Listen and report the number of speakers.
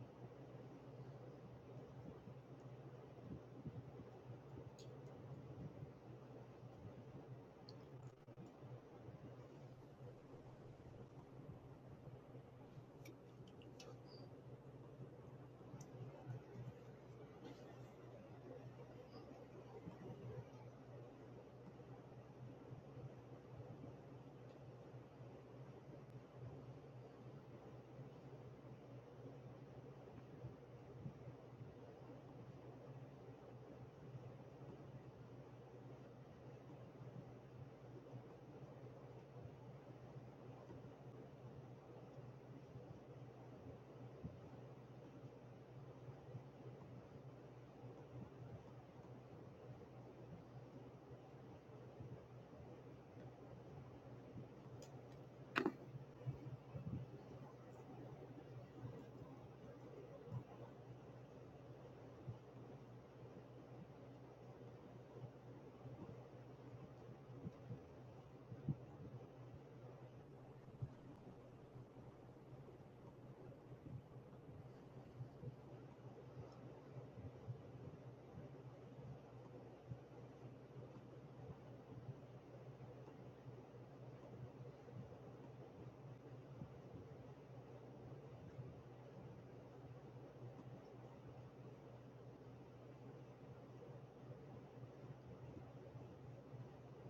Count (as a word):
zero